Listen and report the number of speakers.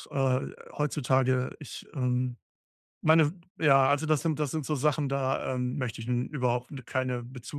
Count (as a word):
one